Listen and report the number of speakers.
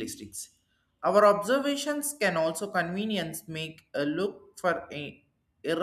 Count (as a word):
one